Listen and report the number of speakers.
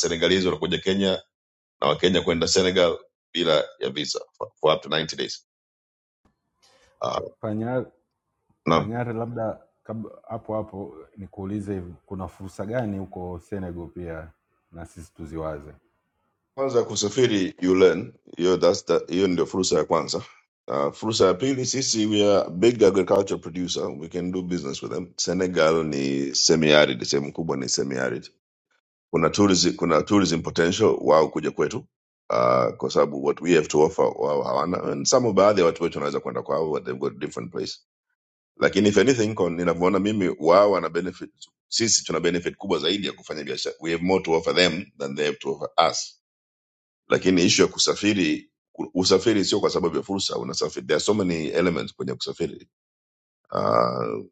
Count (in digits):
2